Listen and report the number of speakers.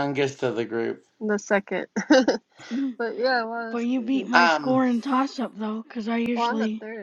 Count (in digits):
3